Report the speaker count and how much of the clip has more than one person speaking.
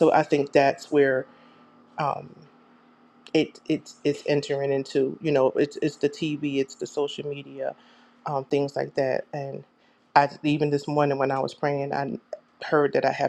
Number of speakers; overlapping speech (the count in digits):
1, no overlap